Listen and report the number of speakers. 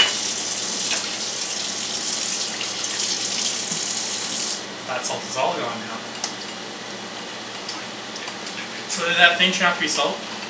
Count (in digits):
1